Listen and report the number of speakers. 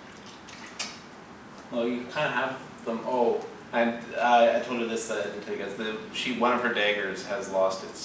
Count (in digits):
1